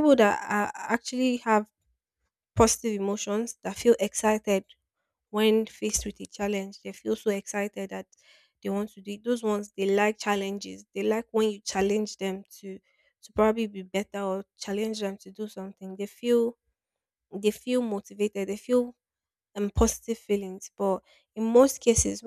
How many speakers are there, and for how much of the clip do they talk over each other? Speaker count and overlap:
1, no overlap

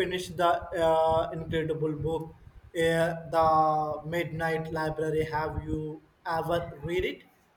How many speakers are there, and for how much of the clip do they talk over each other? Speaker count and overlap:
1, no overlap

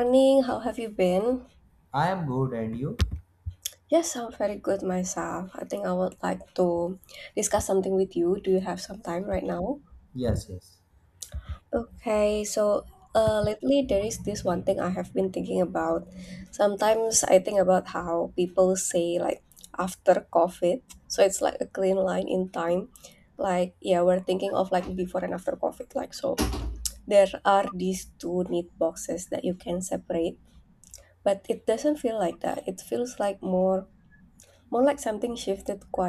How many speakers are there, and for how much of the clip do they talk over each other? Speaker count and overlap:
2, no overlap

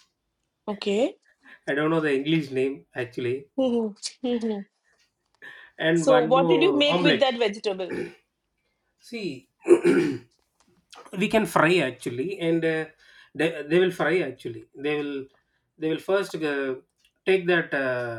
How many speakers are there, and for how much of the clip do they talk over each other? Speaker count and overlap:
2, about 7%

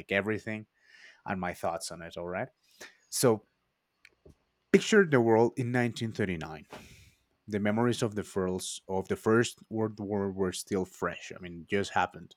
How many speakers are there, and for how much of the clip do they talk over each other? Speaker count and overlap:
1, no overlap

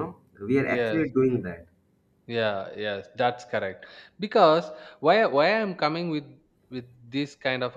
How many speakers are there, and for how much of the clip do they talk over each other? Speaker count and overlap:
2, about 5%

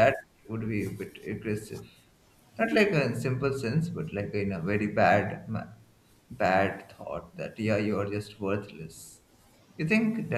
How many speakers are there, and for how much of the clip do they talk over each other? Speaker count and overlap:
1, no overlap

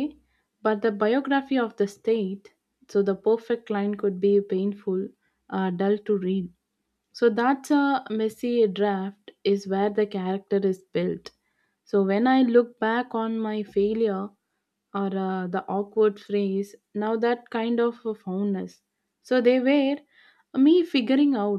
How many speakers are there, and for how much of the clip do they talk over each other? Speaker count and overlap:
1, no overlap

